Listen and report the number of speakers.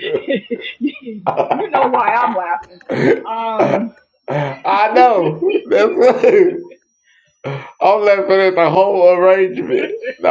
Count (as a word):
two